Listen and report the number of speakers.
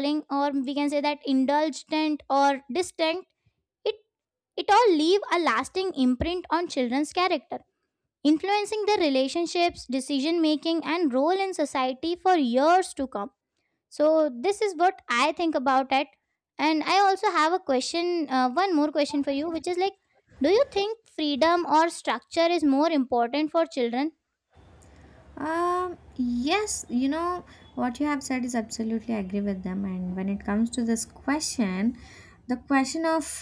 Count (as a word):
two